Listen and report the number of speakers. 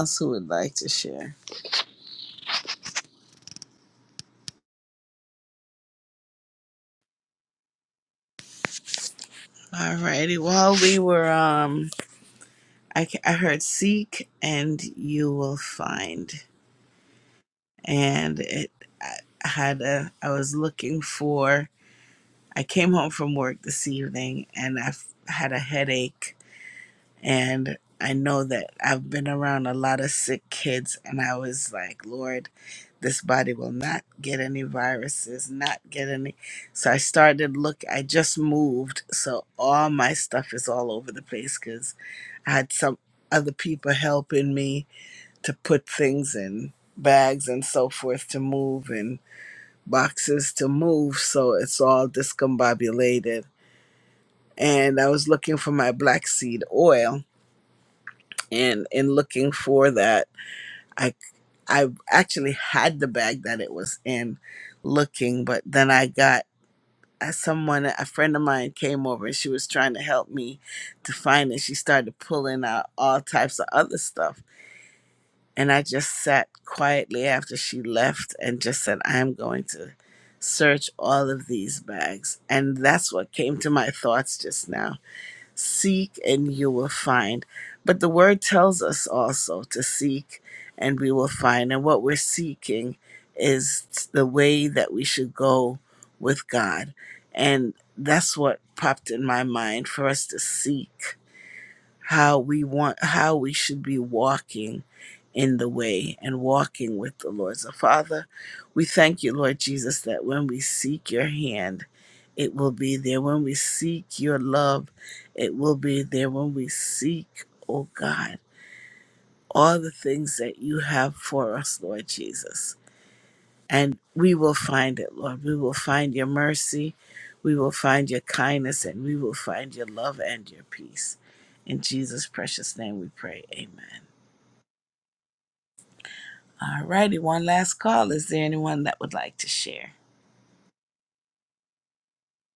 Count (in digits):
1